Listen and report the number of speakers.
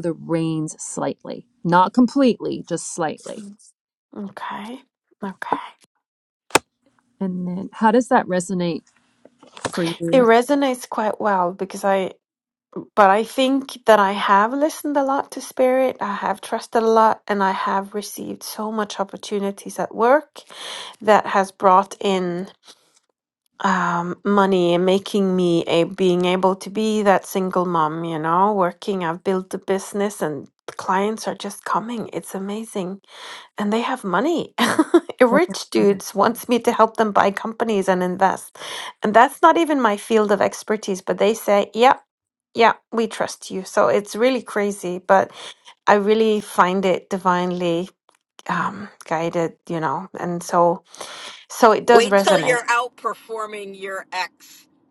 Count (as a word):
three